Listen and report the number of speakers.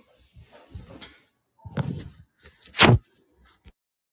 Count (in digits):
0